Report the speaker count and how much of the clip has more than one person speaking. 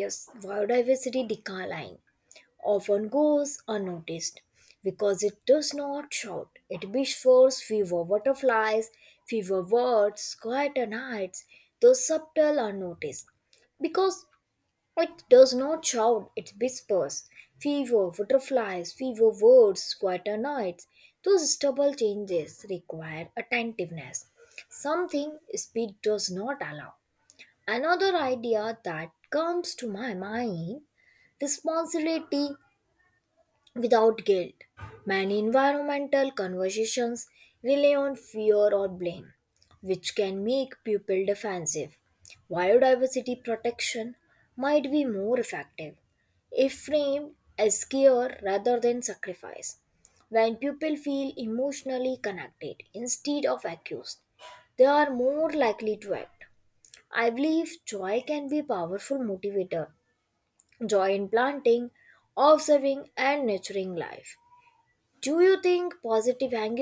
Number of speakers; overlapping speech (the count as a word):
one, no overlap